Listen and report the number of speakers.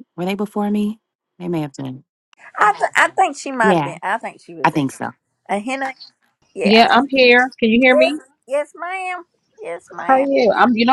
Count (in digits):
3